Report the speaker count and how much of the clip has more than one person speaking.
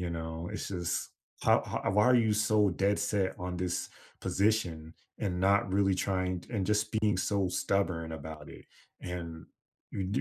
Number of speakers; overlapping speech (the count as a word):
one, no overlap